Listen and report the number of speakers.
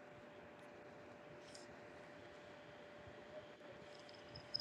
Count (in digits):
0